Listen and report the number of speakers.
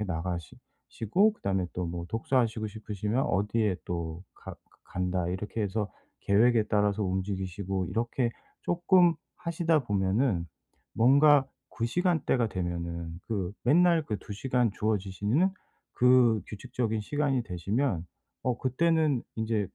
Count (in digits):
1